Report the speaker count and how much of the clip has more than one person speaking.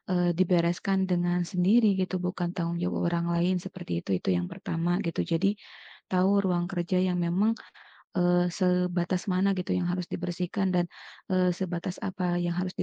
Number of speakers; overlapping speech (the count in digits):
1, no overlap